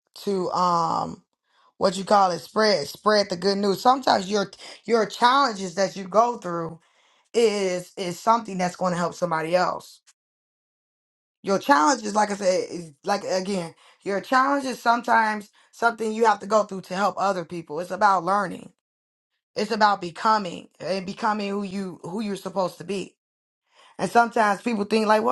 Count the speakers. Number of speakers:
1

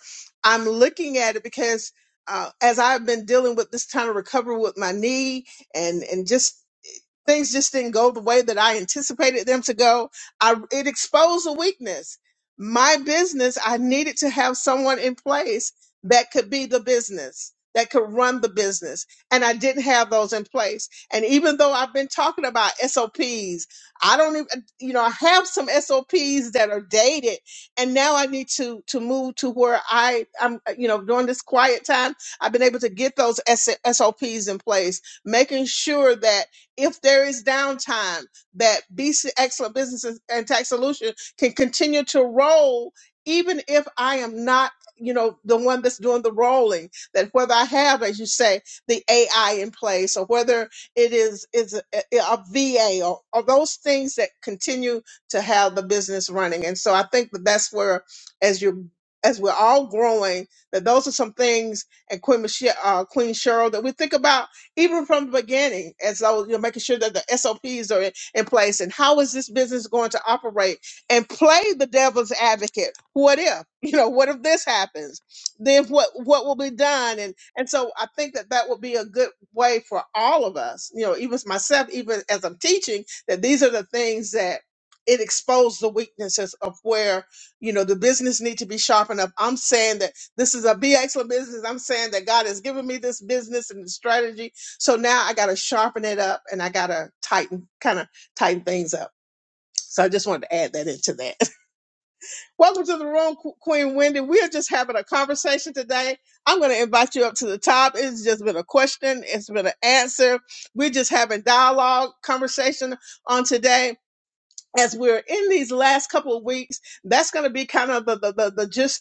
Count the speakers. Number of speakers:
1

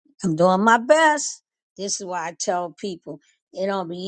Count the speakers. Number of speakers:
1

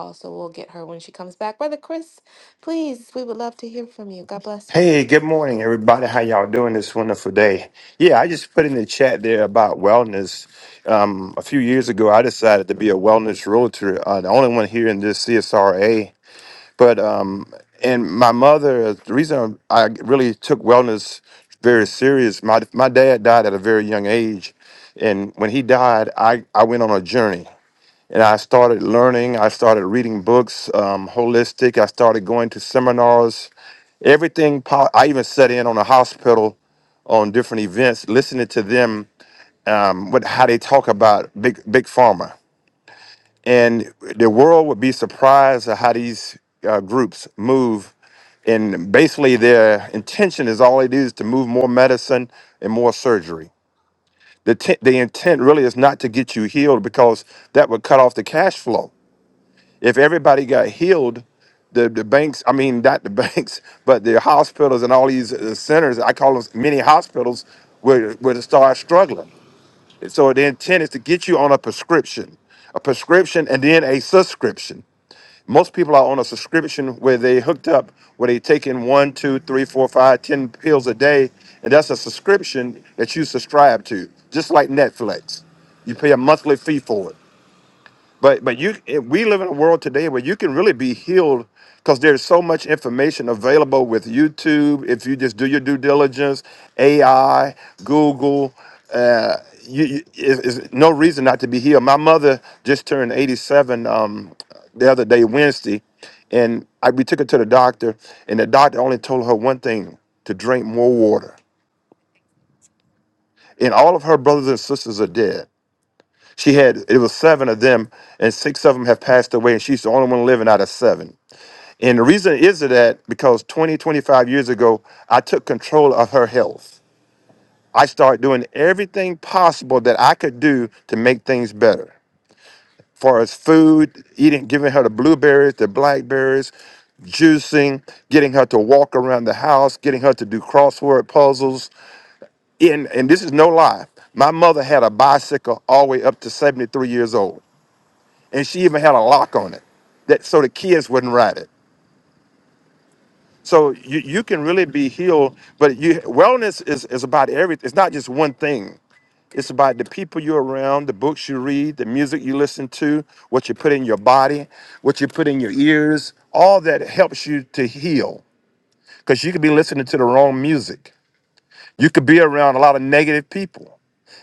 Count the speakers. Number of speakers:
2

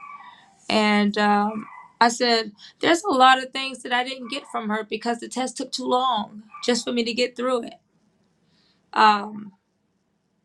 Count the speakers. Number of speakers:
1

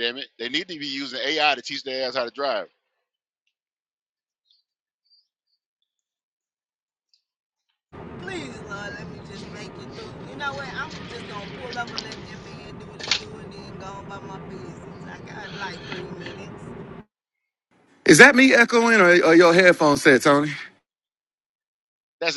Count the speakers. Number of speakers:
3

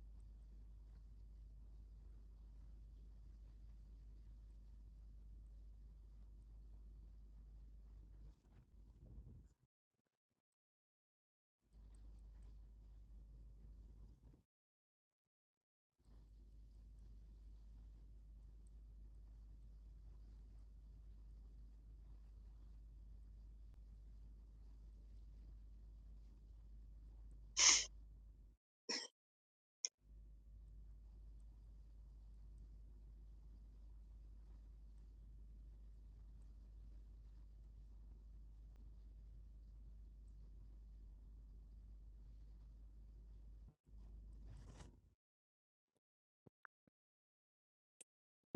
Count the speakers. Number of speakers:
0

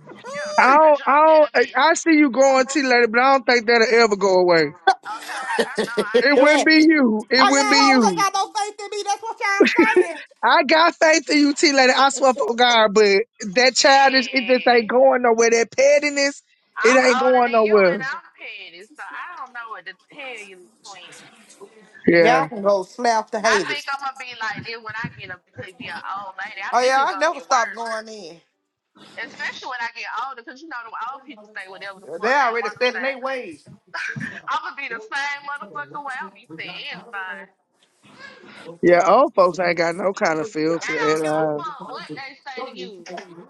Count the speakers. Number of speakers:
3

